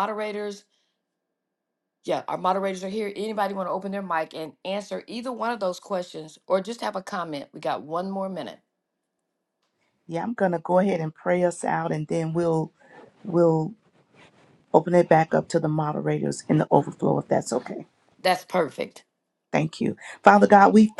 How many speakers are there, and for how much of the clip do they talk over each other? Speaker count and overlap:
two, no overlap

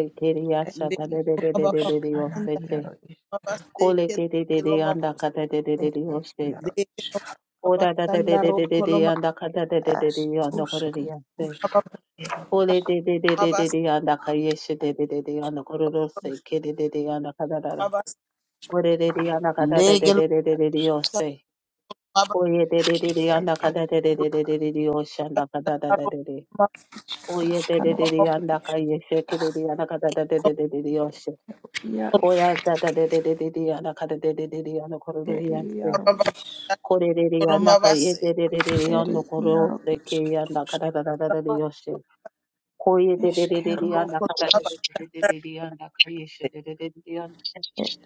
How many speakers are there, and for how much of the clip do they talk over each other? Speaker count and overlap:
three, about 33%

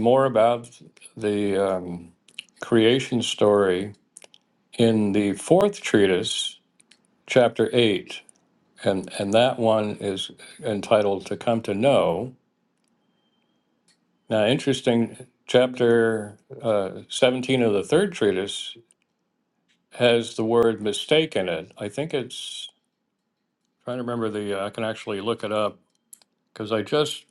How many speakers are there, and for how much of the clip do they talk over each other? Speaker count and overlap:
one, no overlap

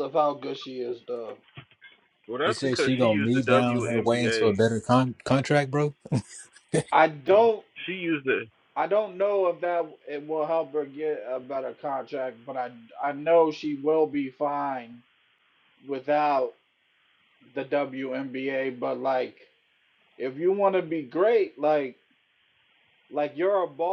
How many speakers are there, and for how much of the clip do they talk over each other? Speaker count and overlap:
three, about 9%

